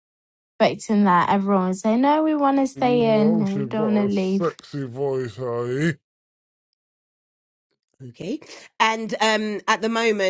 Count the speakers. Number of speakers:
3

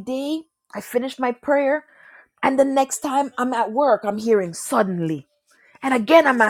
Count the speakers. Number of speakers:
1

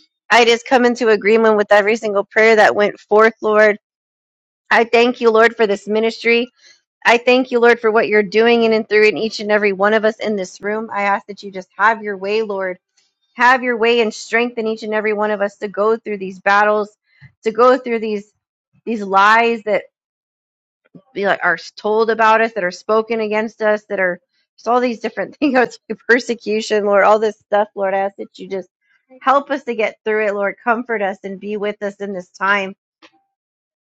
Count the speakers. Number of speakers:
1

